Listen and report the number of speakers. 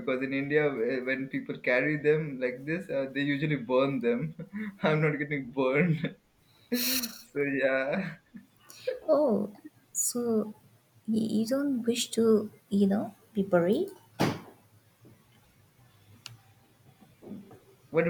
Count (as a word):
two